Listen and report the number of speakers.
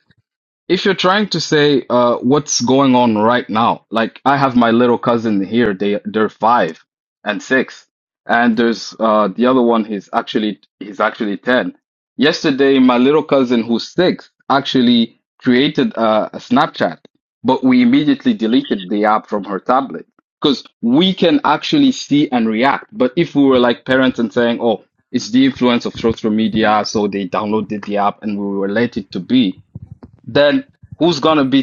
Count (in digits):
1